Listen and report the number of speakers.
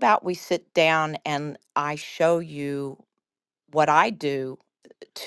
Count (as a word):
one